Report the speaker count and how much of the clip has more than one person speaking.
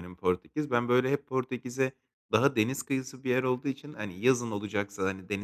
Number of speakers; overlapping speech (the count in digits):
1, no overlap